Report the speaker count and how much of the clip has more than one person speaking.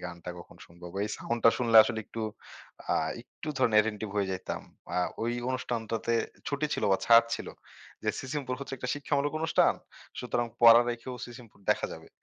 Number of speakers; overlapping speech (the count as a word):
one, no overlap